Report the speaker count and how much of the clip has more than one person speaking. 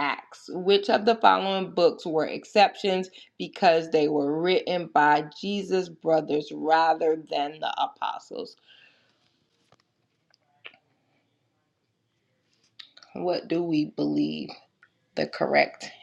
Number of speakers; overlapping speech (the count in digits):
1, no overlap